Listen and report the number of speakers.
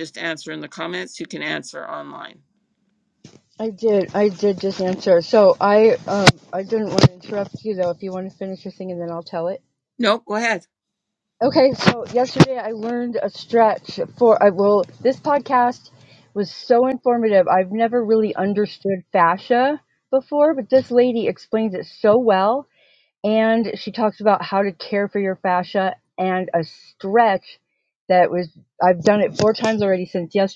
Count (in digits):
2